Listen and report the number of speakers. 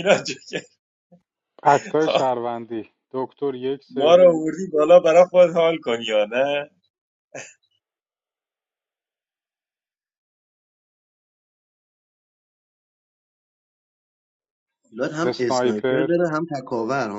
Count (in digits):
3